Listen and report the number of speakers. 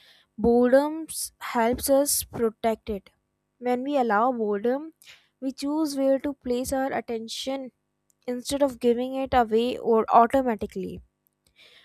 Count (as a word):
one